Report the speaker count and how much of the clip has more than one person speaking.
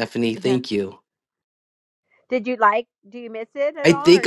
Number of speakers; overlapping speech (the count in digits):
2, about 15%